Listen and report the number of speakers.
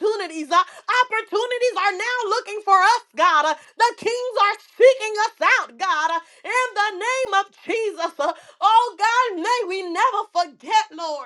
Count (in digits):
1